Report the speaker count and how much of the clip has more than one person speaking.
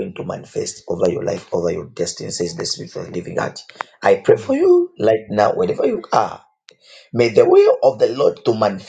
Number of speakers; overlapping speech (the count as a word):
one, no overlap